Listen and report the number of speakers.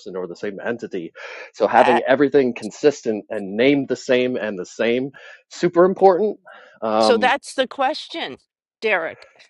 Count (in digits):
2